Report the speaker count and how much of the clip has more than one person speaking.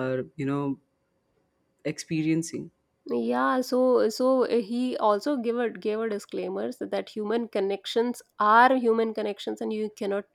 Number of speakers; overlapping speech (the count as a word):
two, no overlap